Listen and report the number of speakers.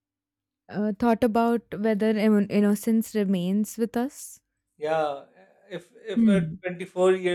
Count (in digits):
2